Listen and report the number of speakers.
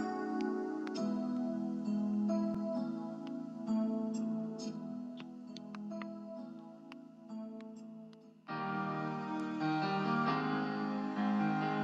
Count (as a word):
zero